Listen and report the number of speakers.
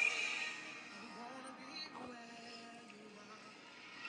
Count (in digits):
0